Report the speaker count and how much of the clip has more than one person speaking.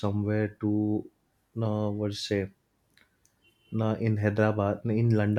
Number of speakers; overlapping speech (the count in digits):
1, no overlap